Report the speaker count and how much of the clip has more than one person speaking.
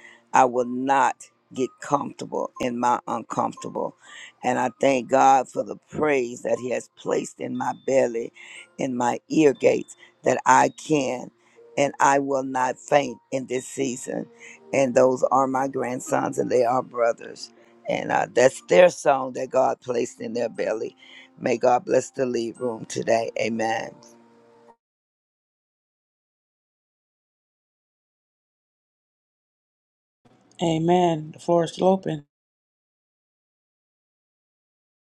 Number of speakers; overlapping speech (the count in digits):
2, no overlap